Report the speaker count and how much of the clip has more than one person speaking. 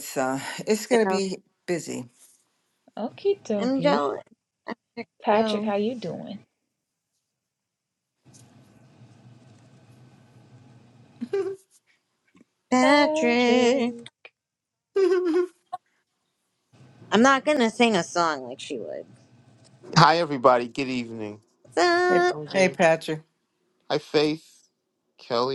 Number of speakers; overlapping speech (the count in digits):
4, about 10%